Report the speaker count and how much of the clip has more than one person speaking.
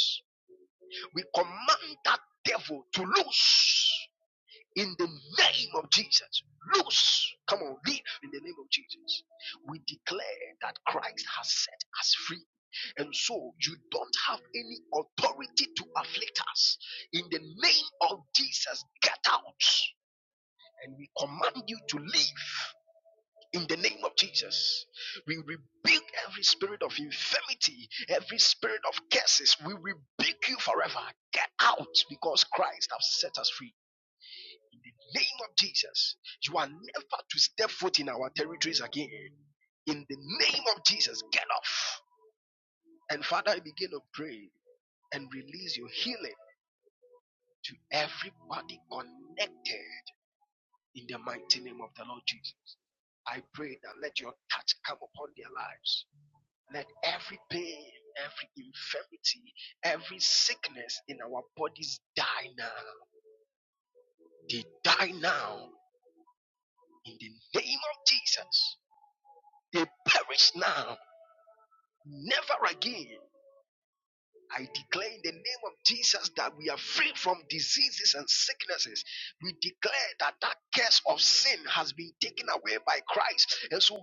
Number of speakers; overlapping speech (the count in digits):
1, no overlap